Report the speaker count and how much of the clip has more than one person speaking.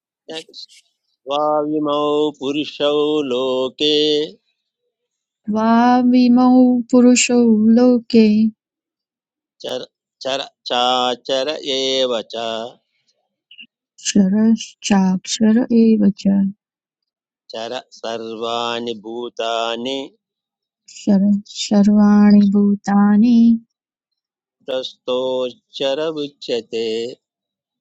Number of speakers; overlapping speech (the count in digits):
2, no overlap